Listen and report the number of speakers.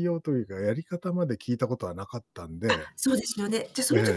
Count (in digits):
2